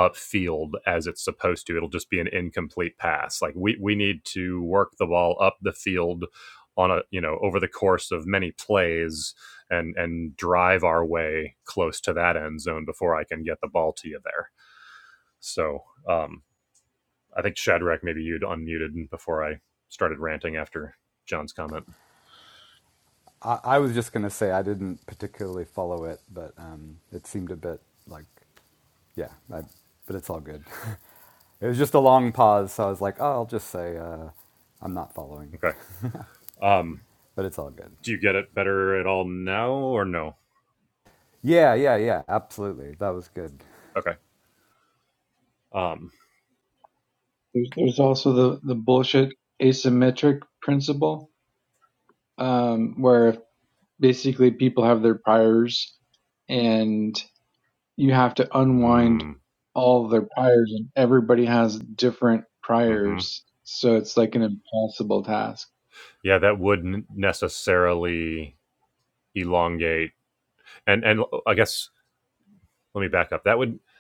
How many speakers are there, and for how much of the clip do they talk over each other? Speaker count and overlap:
three, about 1%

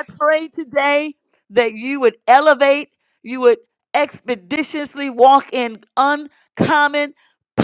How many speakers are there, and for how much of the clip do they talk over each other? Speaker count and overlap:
one, no overlap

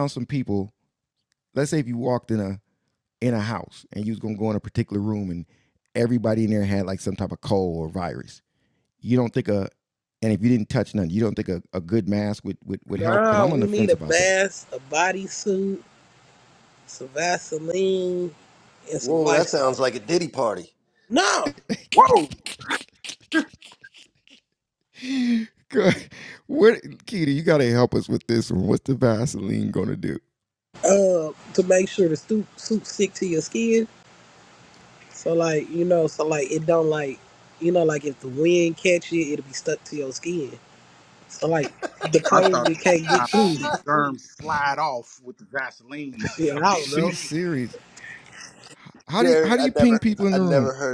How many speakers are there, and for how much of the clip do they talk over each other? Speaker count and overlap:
four, about 10%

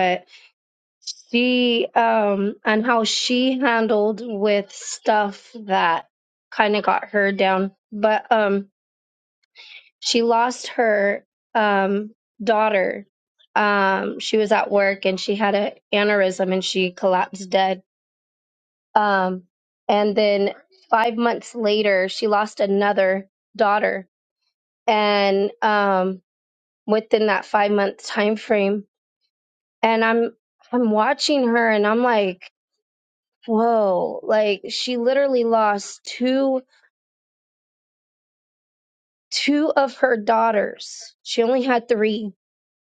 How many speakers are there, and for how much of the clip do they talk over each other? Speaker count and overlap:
one, no overlap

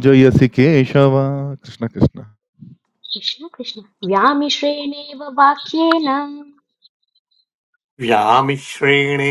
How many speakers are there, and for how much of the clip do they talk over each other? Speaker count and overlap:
three, no overlap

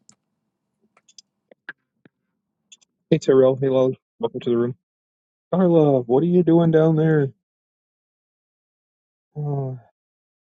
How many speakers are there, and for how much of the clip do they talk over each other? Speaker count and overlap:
one, no overlap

